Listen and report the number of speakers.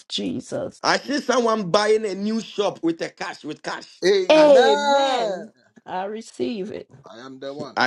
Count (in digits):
3